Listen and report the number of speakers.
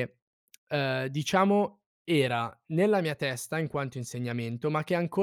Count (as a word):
one